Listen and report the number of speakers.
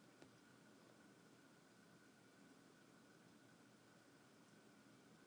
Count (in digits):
0